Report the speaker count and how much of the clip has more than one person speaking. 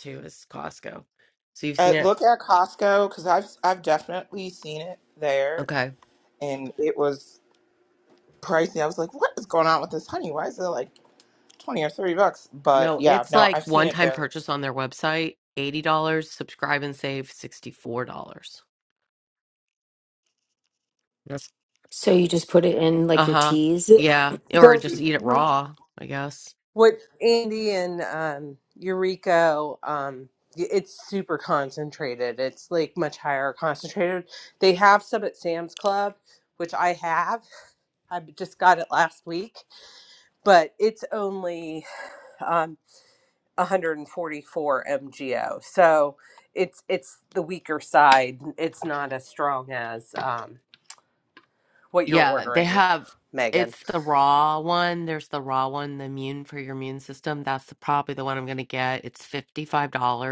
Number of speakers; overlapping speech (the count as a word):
four, about 7%